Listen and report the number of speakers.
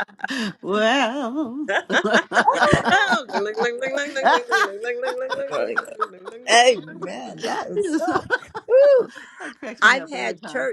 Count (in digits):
3